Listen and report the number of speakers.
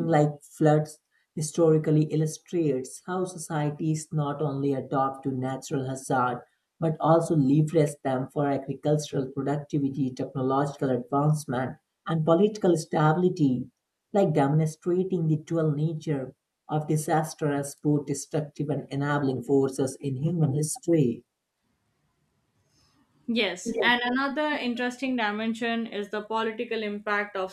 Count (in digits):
2